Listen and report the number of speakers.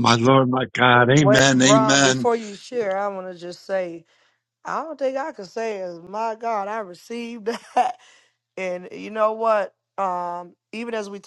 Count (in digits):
2